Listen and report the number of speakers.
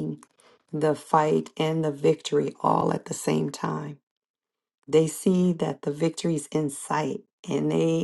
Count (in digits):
1